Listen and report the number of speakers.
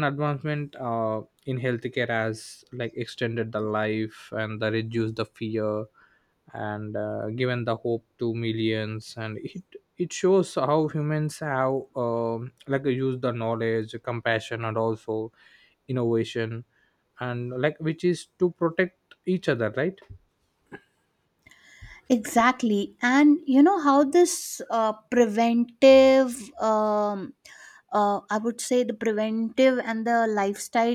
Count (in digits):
2